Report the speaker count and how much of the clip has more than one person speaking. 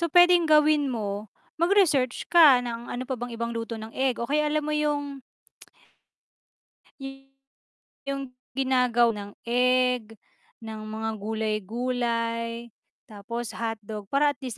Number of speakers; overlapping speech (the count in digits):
1, no overlap